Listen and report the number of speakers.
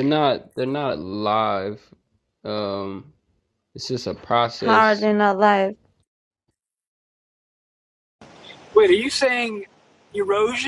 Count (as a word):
three